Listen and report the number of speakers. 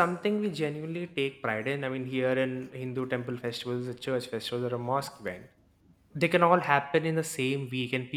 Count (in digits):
1